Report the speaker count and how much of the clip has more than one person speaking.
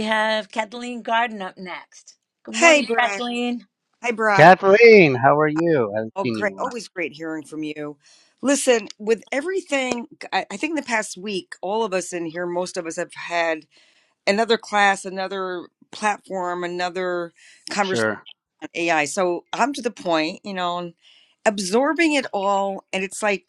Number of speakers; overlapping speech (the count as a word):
three, about 7%